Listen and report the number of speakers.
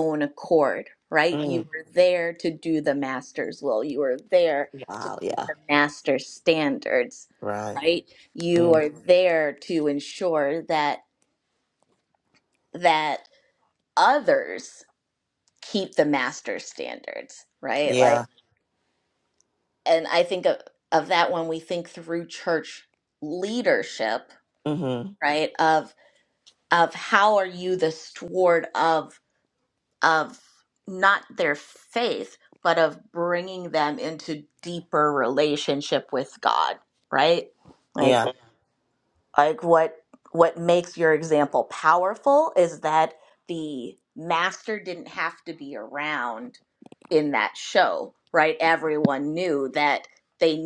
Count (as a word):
two